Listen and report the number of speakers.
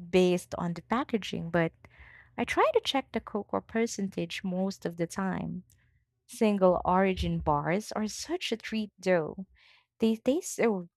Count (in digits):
1